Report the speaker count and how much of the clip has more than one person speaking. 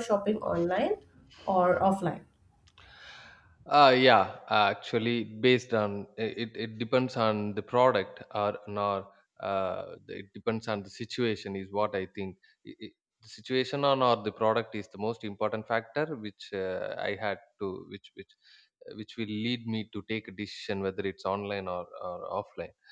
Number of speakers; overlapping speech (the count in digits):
2, no overlap